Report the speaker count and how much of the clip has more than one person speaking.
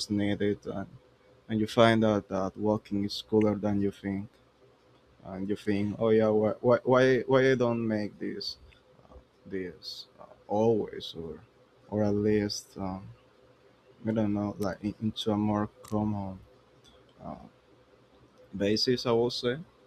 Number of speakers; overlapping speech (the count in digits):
1, no overlap